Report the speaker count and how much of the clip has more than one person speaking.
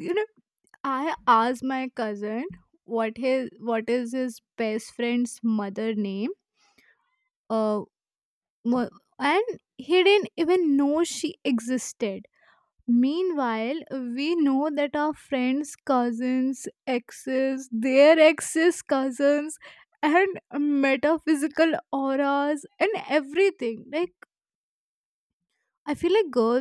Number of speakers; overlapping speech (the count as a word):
one, no overlap